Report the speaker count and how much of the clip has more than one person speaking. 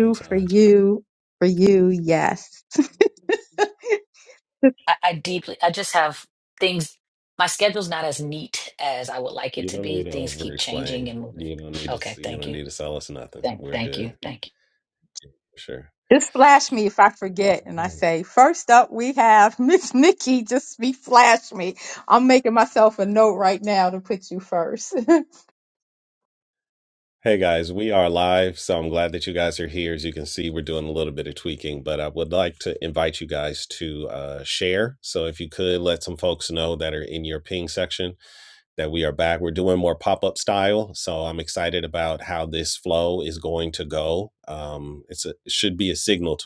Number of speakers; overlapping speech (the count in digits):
3, about 8%